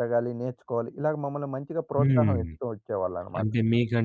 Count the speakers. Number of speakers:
two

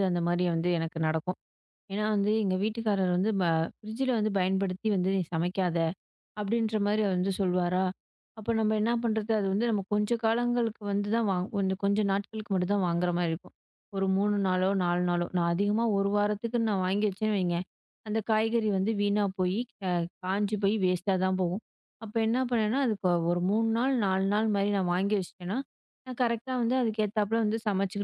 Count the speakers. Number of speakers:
one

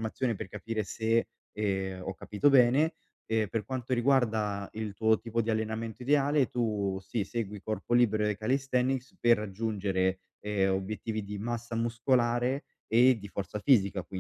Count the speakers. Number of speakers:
one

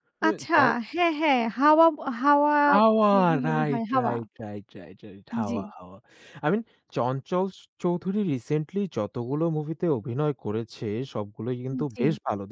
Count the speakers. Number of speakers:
two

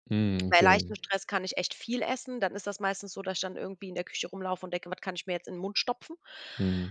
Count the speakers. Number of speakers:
two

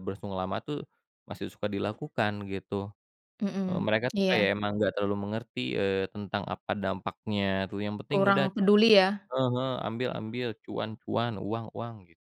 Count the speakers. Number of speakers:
two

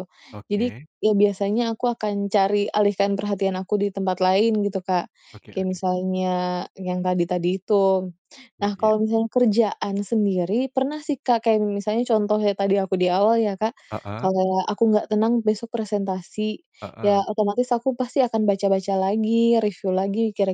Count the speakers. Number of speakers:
two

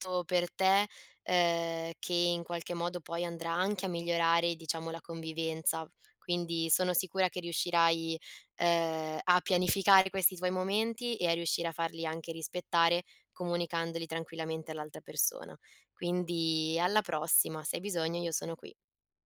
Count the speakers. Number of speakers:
one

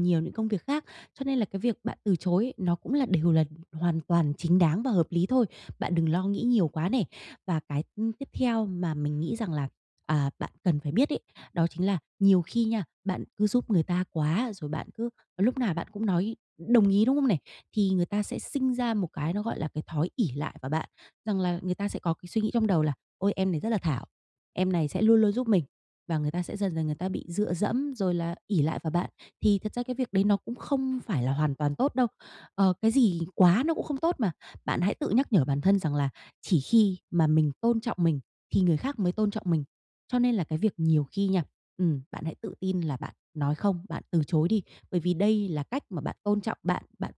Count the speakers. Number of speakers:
one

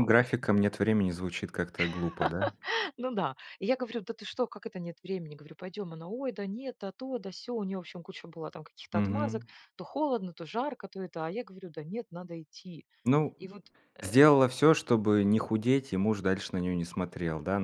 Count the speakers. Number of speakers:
two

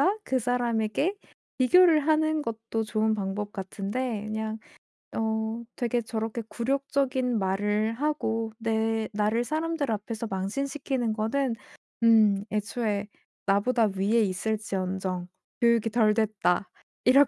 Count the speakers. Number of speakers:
one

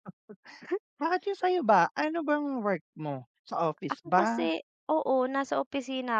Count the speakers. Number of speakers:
two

